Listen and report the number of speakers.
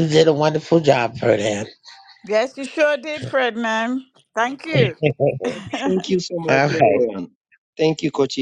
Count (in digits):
3